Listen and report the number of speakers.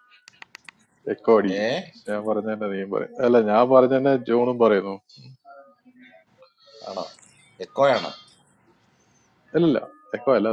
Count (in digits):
2